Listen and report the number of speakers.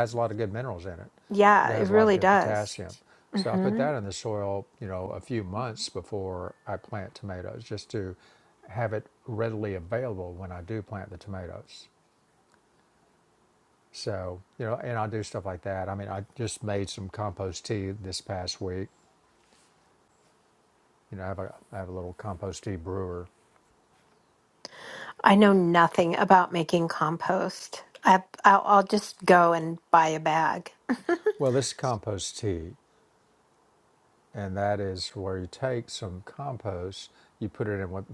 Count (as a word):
two